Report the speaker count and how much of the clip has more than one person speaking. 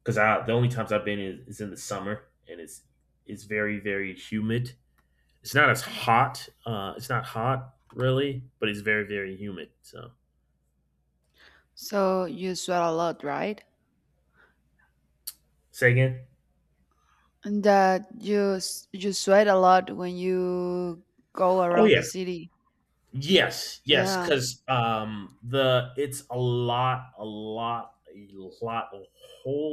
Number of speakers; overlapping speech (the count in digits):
2, about 3%